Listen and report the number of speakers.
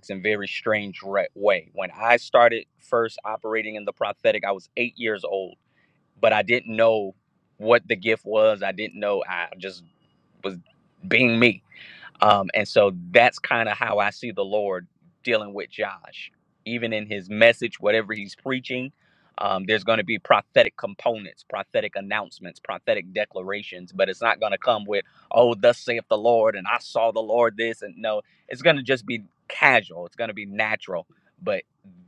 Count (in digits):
1